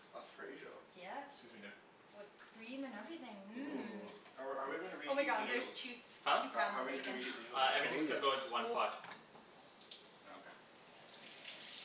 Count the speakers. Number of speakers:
four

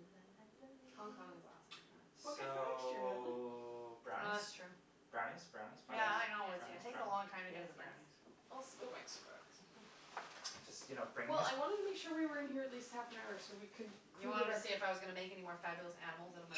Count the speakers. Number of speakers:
four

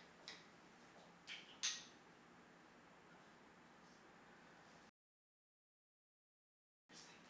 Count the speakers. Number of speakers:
zero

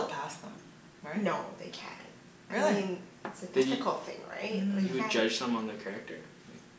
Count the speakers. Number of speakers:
three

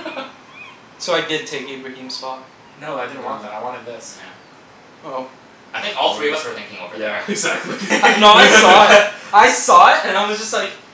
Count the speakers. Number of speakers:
four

